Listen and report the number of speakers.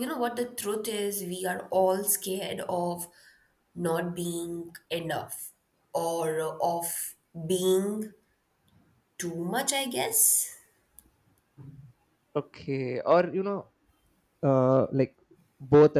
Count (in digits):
2